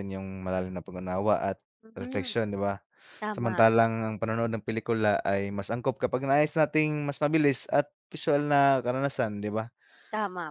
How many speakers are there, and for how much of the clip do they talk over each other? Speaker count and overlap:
2, about 6%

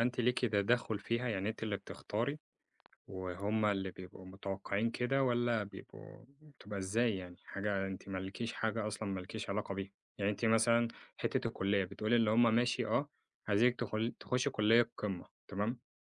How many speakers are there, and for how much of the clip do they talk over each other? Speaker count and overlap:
1, no overlap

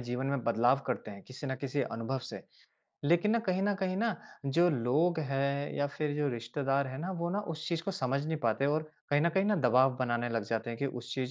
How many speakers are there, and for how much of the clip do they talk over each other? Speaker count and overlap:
1, no overlap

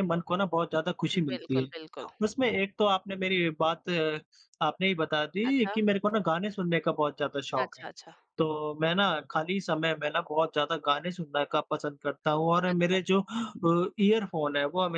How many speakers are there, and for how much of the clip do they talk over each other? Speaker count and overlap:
2, about 10%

